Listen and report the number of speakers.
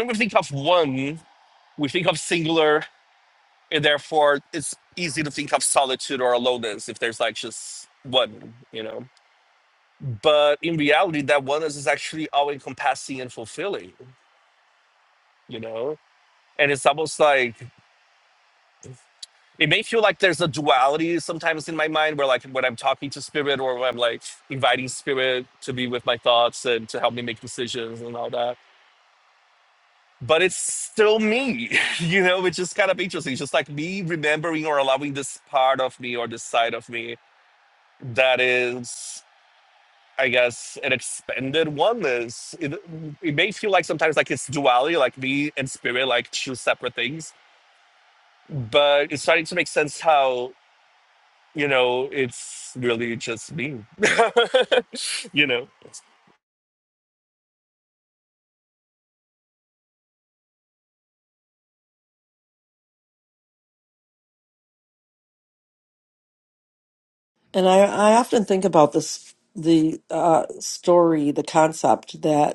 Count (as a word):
two